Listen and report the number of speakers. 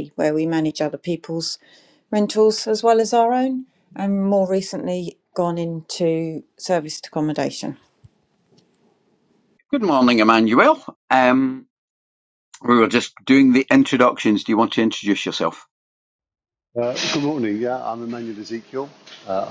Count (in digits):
3